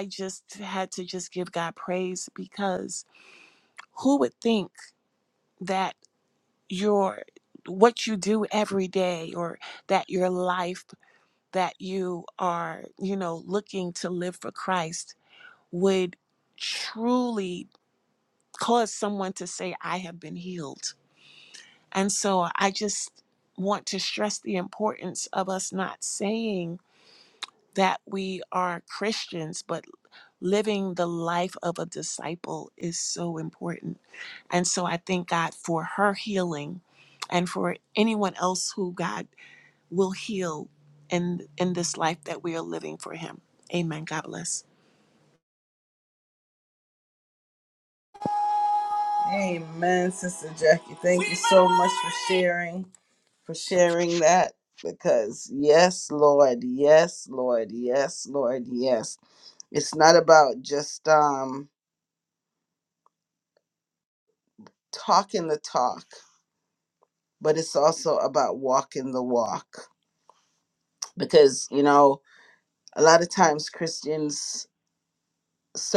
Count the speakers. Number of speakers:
2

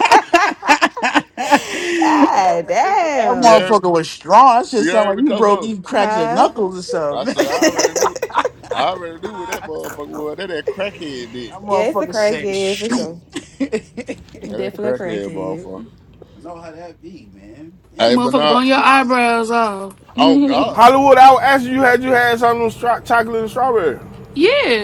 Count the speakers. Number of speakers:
5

